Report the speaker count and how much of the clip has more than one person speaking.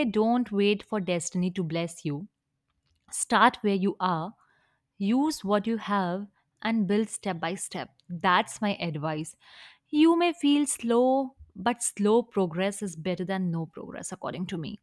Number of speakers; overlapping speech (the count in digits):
1, no overlap